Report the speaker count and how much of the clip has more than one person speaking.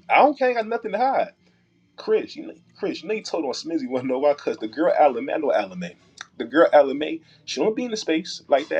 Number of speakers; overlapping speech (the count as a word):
one, no overlap